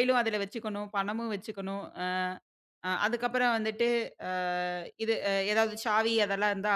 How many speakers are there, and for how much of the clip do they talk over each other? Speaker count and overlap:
one, no overlap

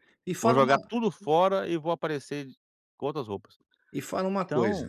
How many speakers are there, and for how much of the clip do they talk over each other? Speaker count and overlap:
two, about 16%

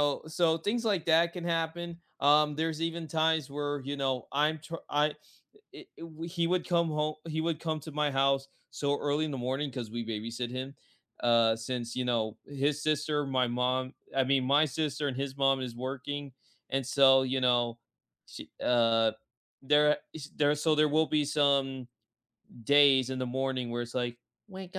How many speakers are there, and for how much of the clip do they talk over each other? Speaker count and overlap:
one, no overlap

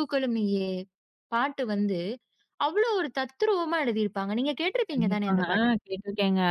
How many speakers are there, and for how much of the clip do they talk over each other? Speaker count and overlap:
two, about 12%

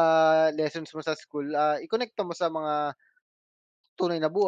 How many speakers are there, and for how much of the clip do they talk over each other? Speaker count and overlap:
one, no overlap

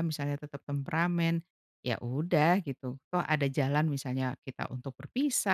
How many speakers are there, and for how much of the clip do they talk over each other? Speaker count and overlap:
one, no overlap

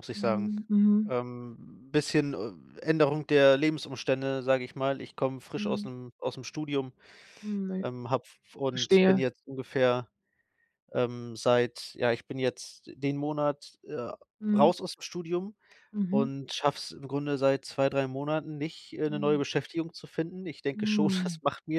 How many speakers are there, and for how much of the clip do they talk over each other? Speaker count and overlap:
two, about 10%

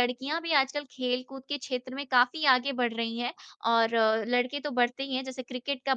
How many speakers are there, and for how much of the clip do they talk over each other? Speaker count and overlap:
one, no overlap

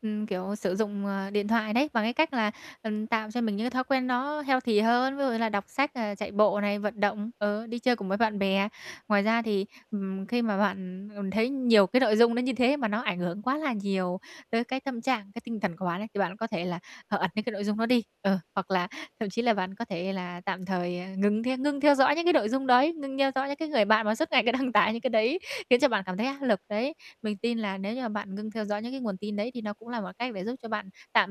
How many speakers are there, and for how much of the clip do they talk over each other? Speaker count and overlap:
one, no overlap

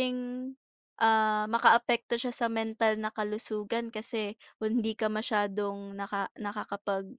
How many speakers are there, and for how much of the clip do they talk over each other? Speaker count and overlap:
one, no overlap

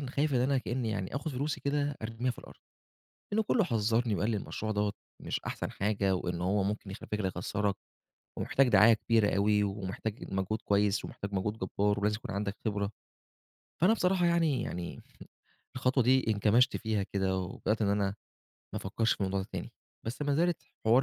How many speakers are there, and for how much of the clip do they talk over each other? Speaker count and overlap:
one, no overlap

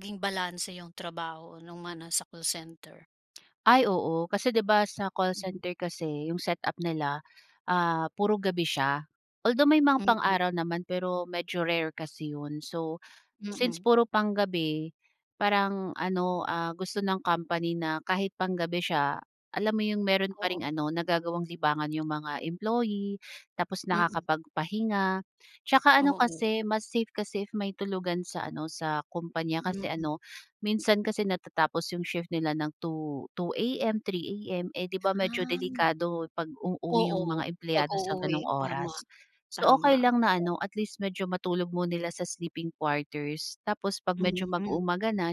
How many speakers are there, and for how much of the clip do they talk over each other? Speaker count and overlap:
two, about 14%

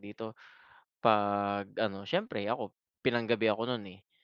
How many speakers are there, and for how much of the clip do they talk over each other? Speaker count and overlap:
one, no overlap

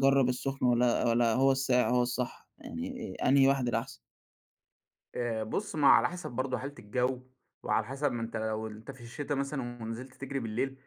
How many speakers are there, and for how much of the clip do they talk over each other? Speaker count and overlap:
two, no overlap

